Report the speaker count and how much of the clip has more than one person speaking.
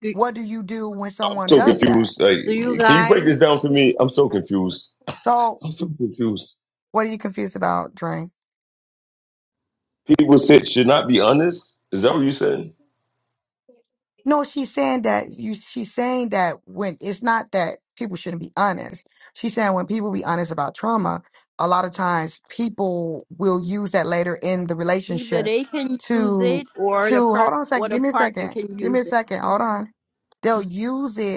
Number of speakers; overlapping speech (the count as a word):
three, about 15%